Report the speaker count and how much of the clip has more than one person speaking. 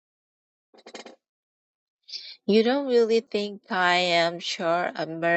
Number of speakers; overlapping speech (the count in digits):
1, no overlap